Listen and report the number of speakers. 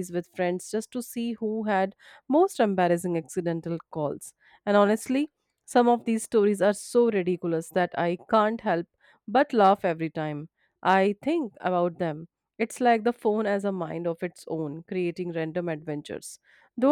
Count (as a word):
one